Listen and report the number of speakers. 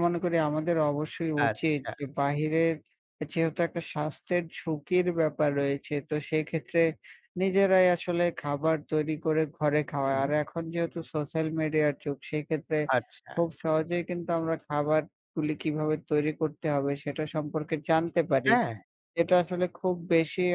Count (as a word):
two